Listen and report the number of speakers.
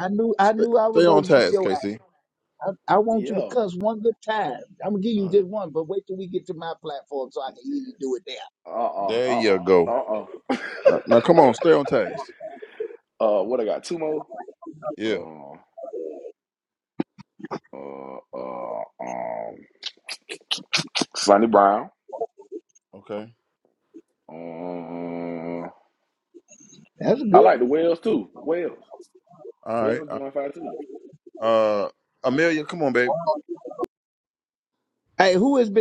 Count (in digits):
3